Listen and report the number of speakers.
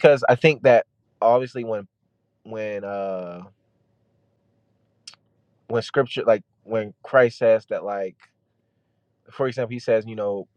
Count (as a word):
one